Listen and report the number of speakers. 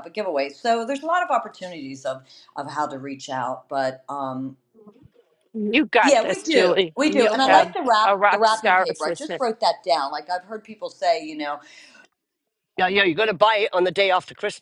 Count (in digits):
3